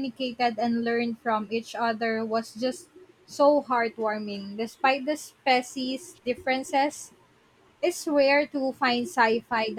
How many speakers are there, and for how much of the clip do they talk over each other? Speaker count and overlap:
1, no overlap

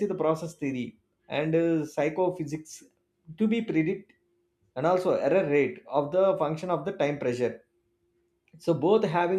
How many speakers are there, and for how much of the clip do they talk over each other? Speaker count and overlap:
1, no overlap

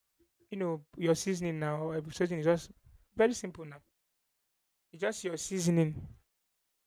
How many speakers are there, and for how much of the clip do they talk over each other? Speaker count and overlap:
1, no overlap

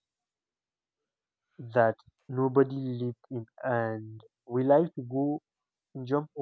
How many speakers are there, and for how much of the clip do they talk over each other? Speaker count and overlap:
1, no overlap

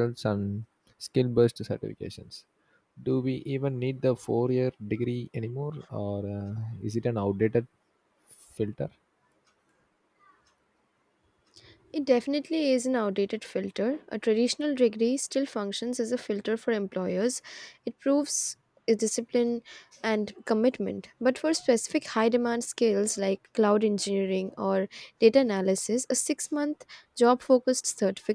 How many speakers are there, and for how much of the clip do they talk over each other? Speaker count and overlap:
2, no overlap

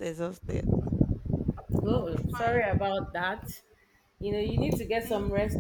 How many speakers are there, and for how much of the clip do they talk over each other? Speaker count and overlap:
2, about 19%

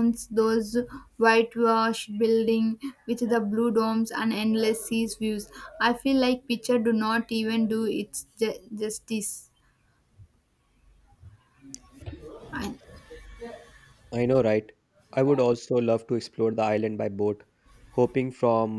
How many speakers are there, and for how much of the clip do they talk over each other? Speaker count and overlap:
2, no overlap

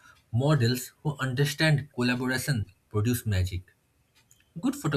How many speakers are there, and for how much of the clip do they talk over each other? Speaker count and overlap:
1, no overlap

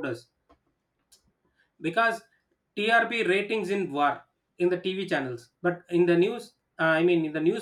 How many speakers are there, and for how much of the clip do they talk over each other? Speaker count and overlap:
1, no overlap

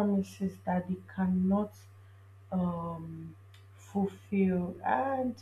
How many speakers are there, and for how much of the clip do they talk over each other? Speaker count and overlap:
1, no overlap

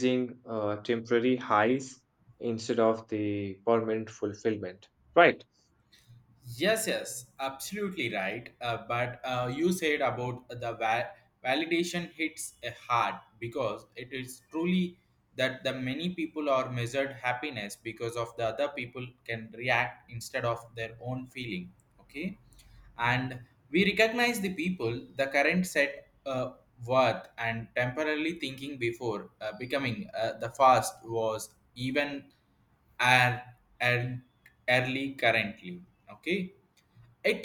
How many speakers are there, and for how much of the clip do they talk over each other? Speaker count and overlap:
2, no overlap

